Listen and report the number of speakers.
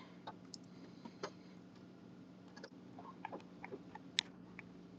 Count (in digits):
0